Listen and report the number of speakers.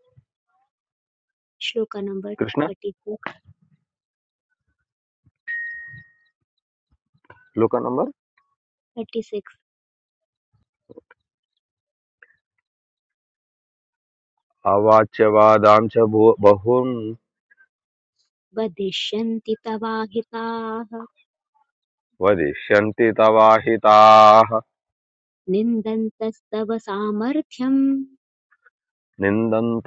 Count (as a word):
two